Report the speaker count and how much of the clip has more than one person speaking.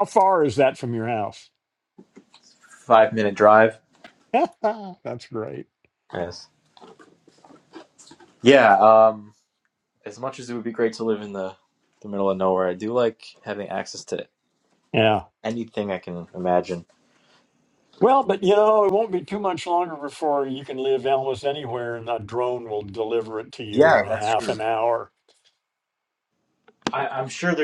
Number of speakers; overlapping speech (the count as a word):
two, about 3%